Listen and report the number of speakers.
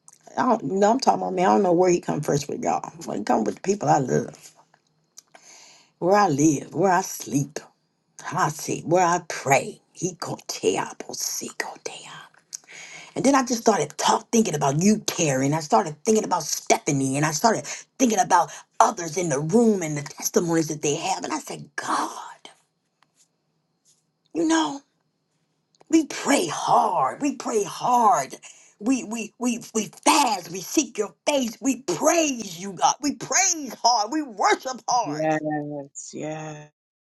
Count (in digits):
2